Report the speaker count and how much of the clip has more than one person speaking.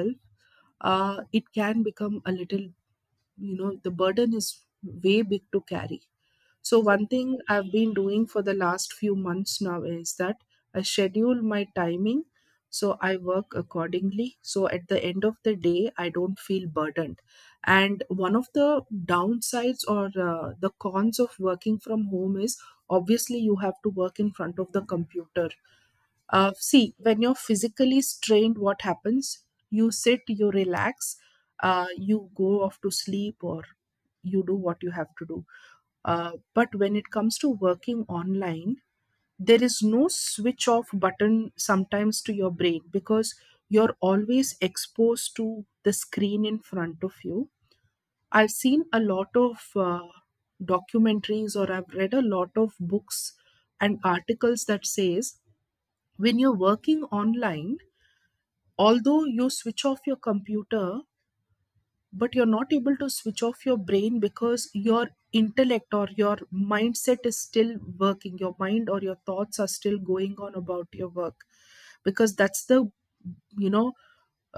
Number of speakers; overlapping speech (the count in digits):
1, no overlap